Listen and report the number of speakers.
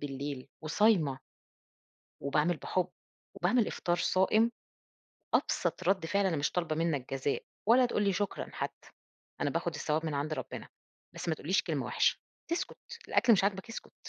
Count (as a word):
one